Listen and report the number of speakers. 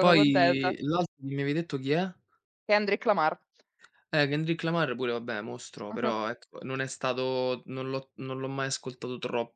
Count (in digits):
2